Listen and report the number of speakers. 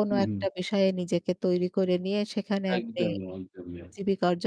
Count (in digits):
2